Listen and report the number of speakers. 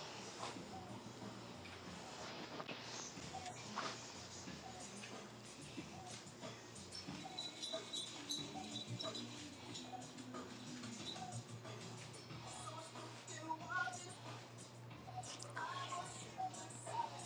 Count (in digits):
0